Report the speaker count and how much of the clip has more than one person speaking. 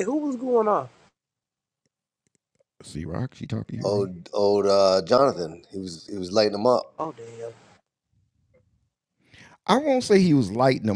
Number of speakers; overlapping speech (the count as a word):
three, about 2%